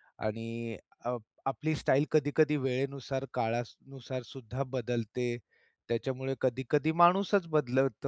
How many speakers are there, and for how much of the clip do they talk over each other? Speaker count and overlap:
one, no overlap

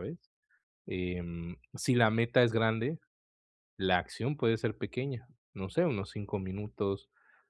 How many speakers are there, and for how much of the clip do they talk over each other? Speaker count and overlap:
one, no overlap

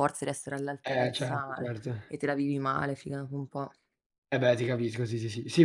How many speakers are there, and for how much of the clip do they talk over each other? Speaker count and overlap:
two, about 14%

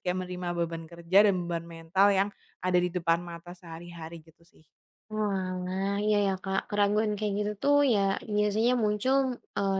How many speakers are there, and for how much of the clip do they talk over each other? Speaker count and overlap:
two, no overlap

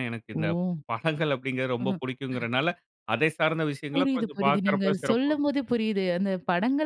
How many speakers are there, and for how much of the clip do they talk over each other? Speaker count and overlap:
two, about 24%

